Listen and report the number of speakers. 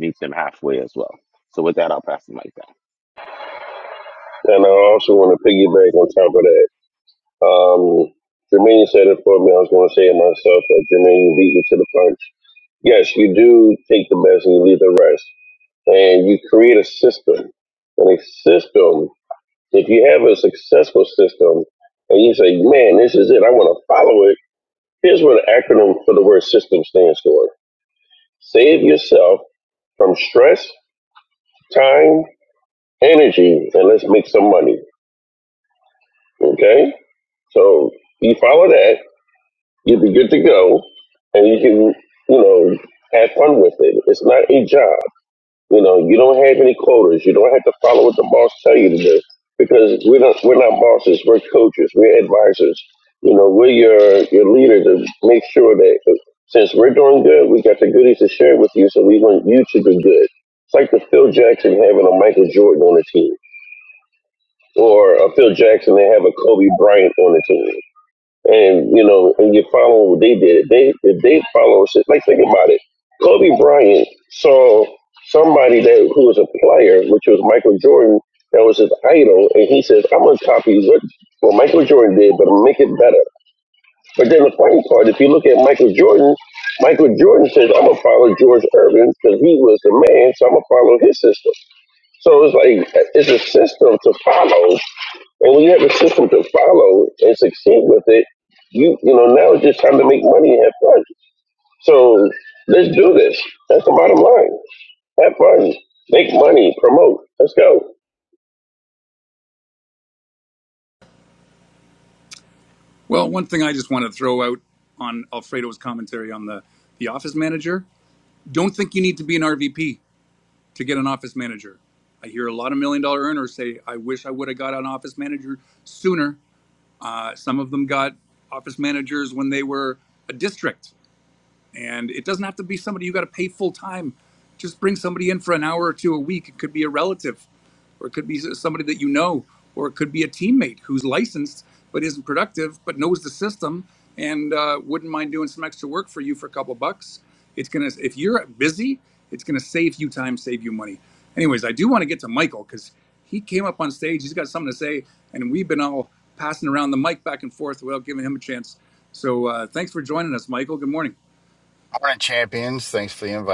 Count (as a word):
four